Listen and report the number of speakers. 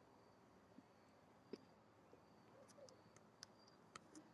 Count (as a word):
zero